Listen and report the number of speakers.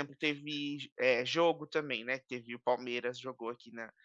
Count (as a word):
one